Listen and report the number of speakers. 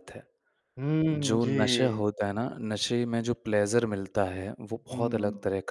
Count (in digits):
2